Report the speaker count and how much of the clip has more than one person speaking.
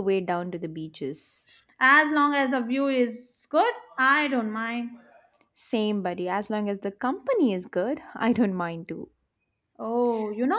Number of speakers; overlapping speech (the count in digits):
2, no overlap